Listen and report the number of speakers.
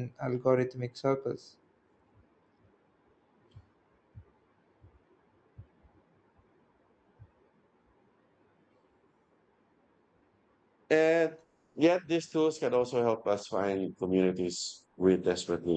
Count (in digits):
2